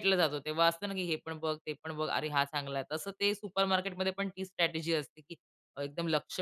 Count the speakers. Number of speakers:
1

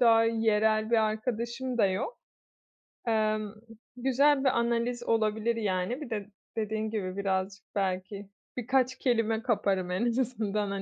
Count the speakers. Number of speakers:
1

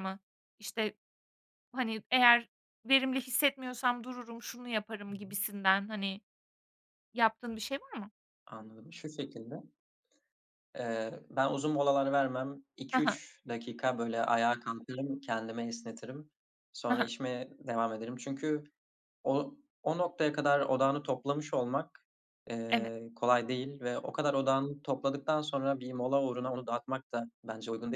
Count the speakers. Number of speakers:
2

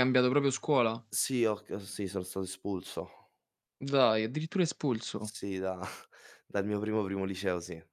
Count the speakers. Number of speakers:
2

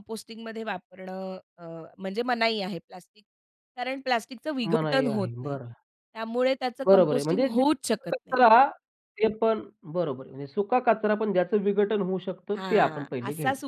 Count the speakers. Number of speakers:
2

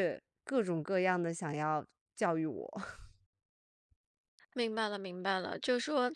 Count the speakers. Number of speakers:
2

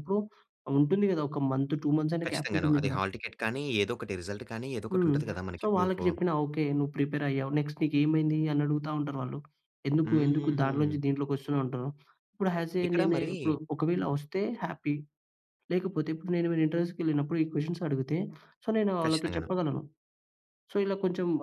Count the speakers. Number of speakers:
2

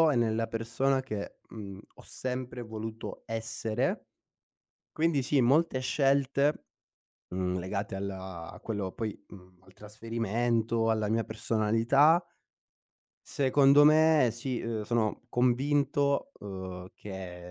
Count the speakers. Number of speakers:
1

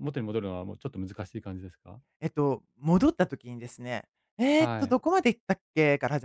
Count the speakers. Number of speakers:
2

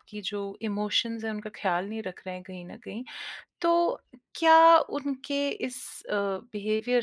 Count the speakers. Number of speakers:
1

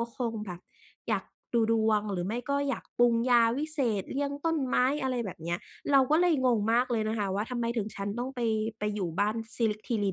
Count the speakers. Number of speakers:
1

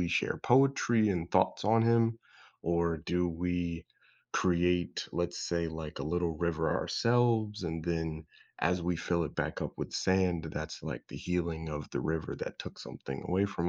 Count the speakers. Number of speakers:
1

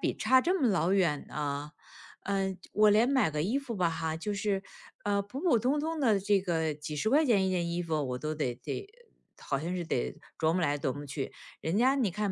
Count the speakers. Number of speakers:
1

